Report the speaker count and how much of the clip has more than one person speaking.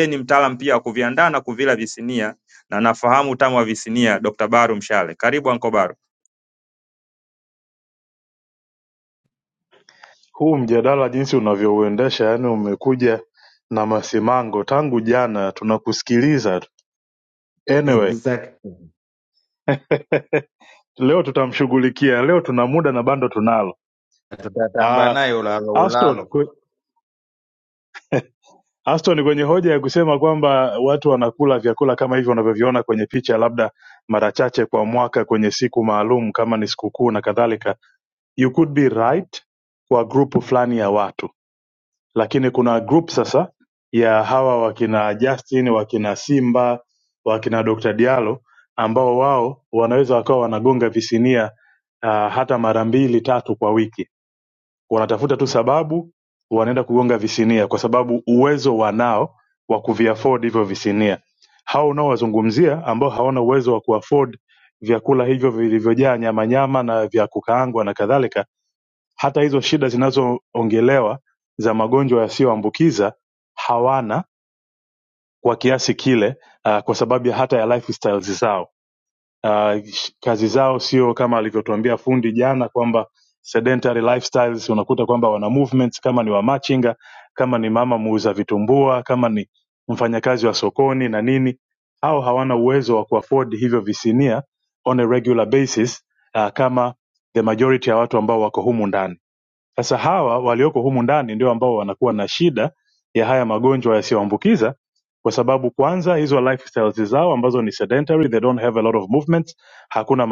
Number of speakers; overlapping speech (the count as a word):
three, about 1%